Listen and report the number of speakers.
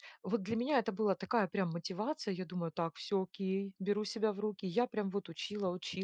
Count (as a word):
one